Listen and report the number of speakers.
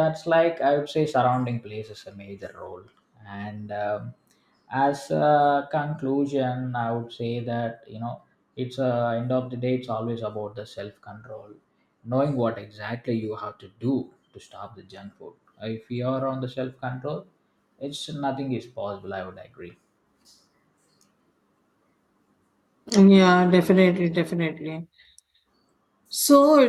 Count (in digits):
2